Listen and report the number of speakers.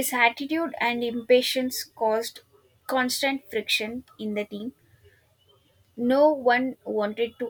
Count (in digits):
1